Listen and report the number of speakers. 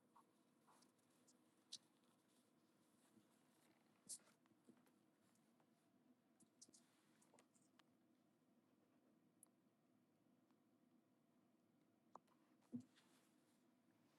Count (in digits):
0